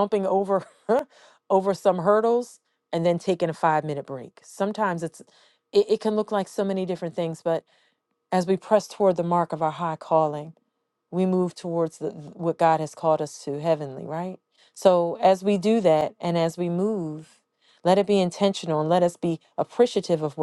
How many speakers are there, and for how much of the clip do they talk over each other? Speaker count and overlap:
1, no overlap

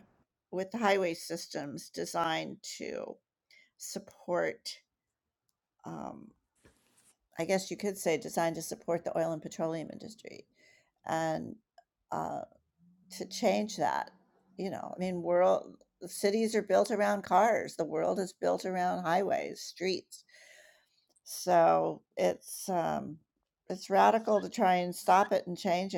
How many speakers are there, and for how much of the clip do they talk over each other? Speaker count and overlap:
1, no overlap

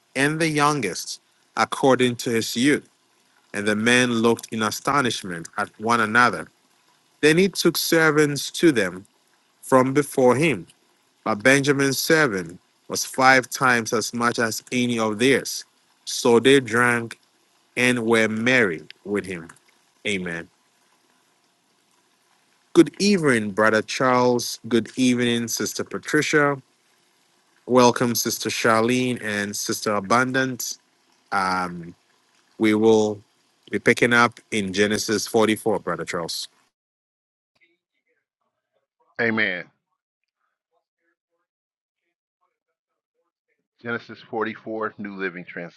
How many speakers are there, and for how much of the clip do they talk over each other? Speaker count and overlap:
2, no overlap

